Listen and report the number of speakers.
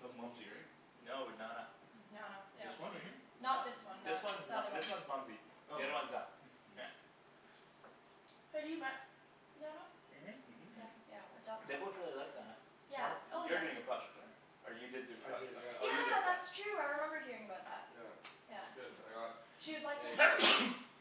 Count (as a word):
four